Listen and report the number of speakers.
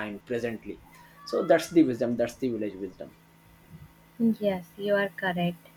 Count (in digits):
2